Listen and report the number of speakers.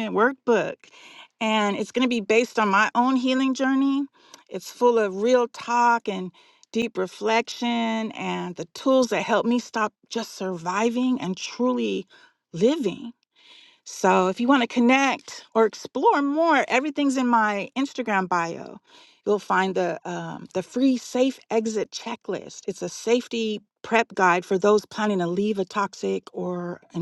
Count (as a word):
one